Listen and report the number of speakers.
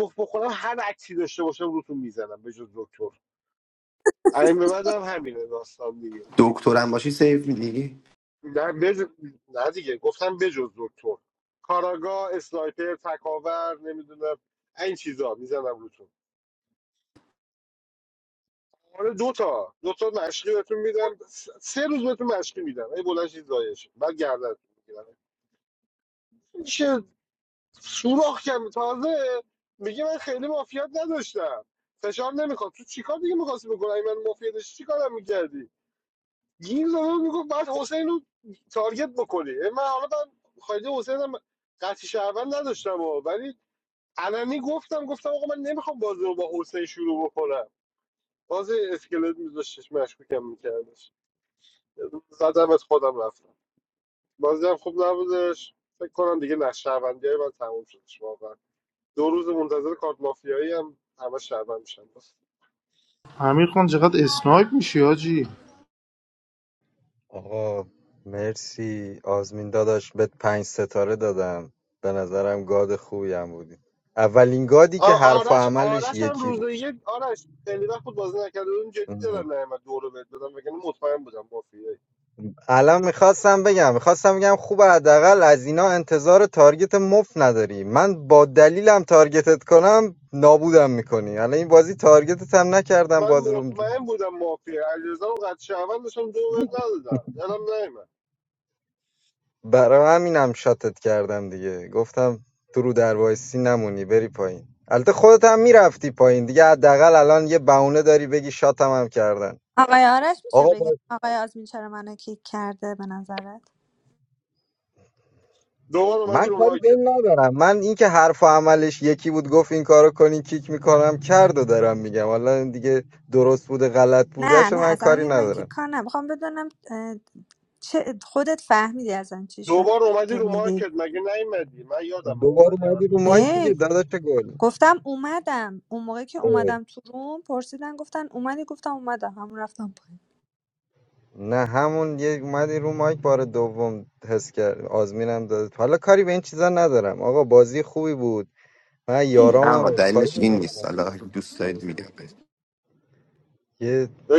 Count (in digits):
5